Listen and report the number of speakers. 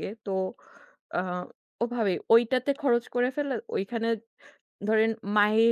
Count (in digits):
1